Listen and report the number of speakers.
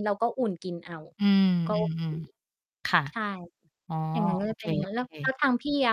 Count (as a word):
two